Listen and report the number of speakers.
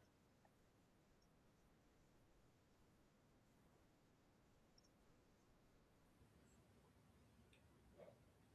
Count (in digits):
0